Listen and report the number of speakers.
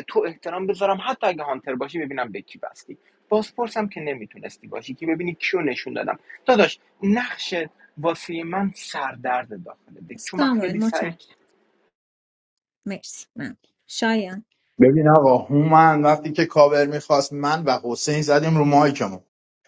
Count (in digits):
3